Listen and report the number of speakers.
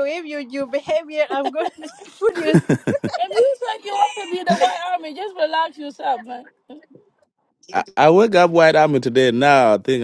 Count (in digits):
3